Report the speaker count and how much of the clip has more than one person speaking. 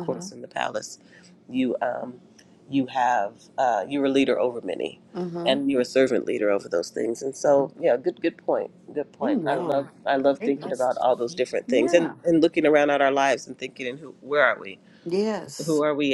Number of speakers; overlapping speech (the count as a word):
two, about 11%